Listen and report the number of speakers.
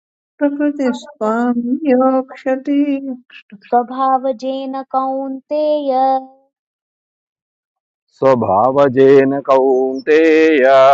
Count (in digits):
3